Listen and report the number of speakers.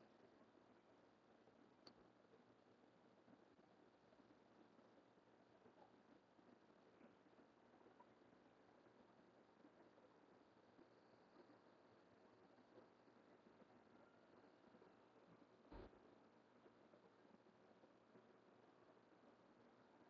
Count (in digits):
0